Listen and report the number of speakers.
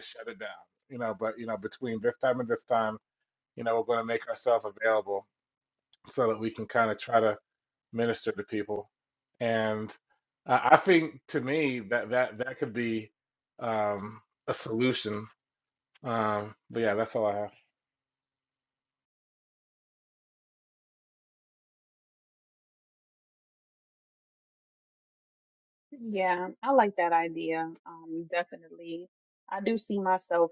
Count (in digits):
2